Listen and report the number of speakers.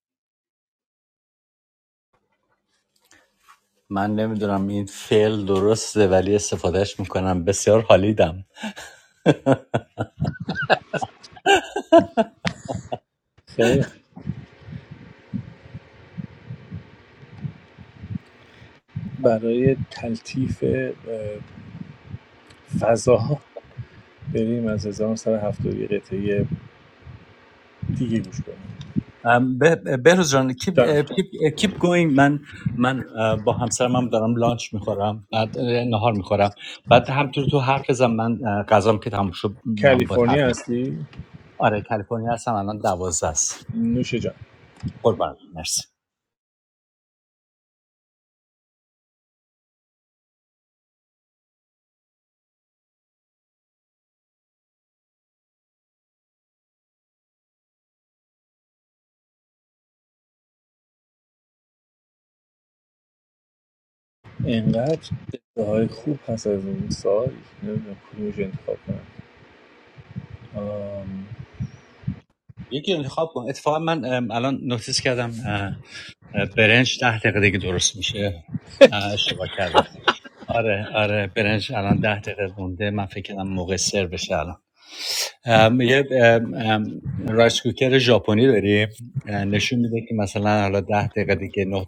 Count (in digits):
2